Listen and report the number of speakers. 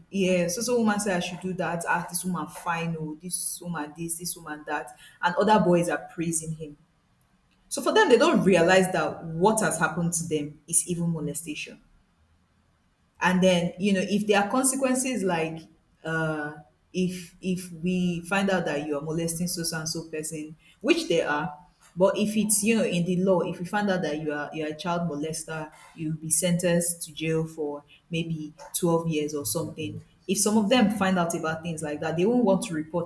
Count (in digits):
1